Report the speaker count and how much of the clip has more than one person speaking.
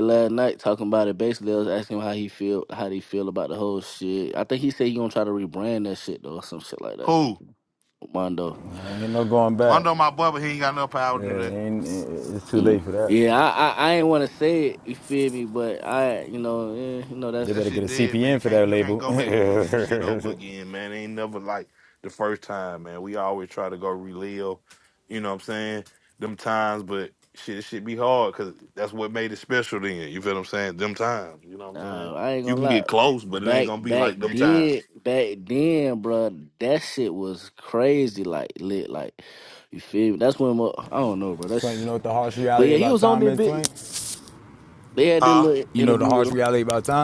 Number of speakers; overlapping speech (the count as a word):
three, about 16%